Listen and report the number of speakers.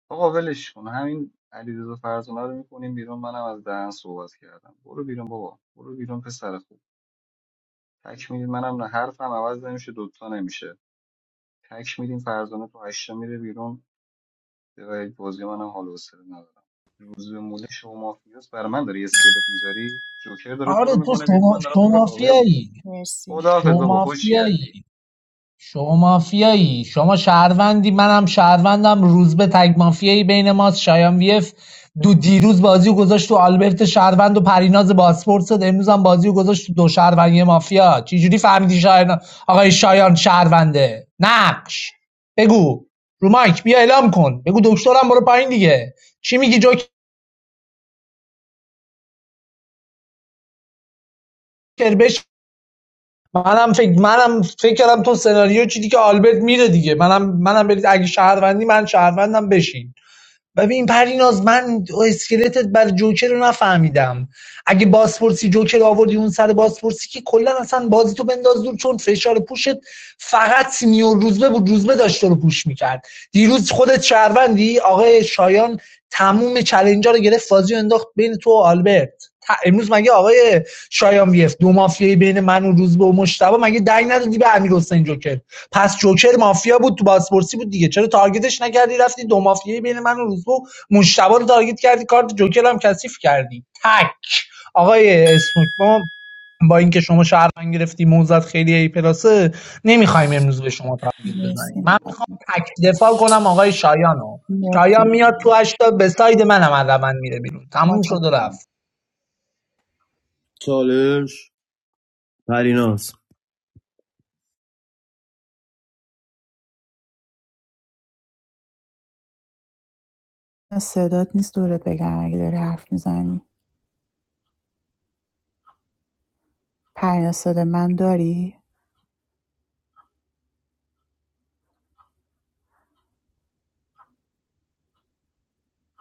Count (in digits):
4